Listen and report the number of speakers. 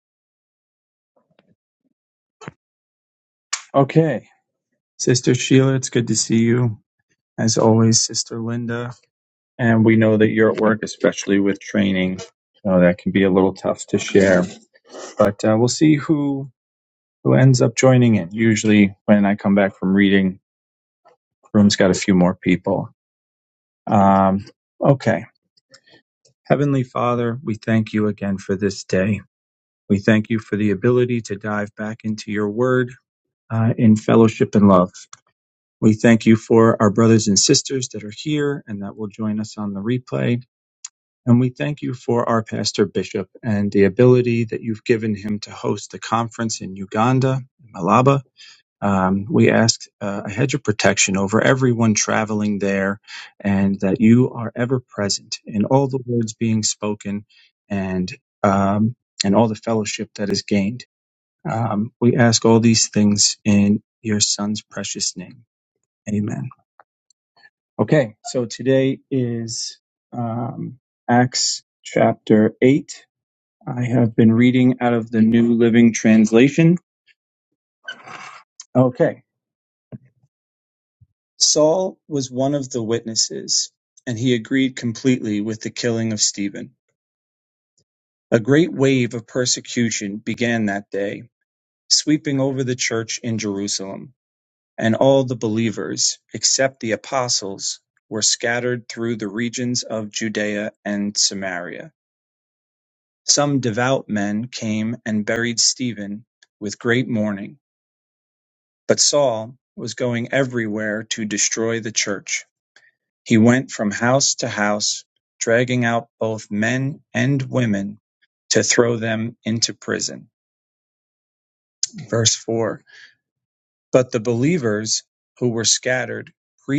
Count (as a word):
one